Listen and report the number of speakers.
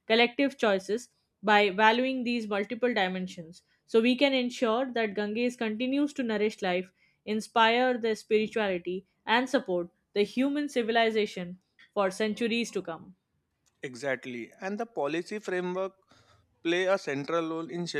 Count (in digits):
2